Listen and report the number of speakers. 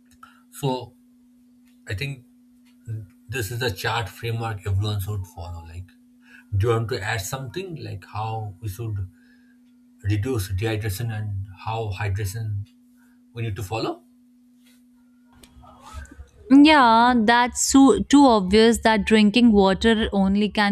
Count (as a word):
two